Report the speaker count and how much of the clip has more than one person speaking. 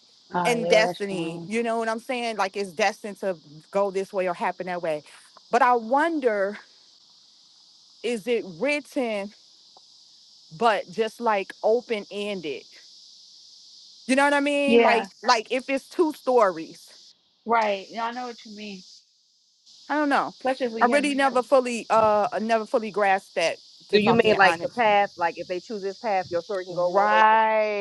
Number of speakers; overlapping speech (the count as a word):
three, about 10%